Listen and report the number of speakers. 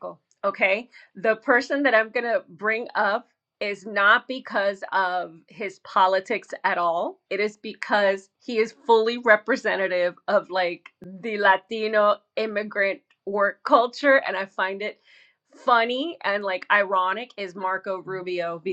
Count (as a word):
one